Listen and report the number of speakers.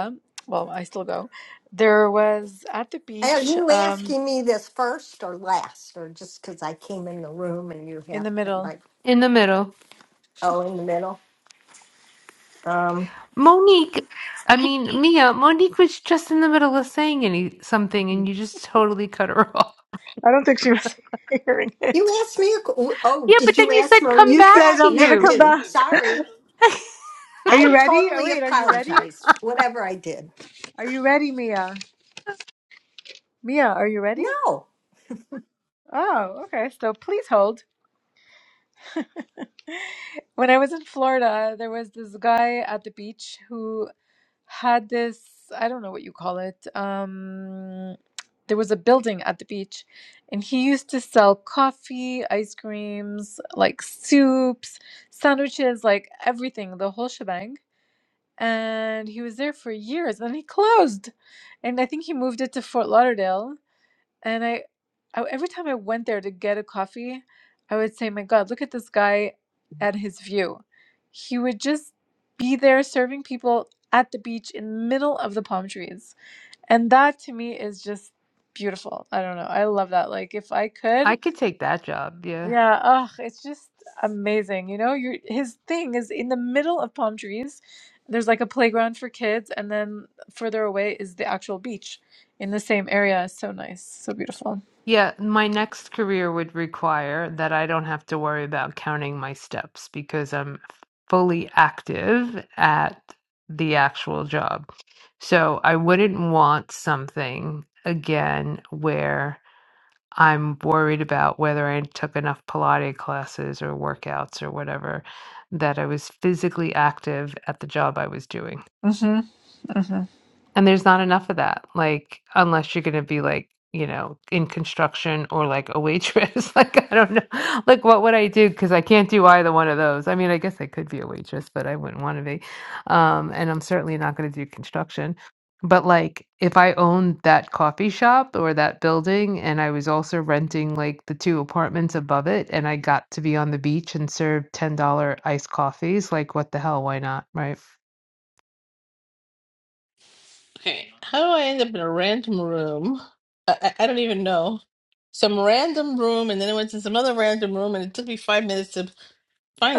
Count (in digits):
4